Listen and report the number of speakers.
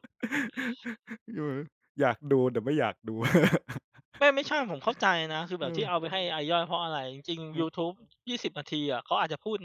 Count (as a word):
two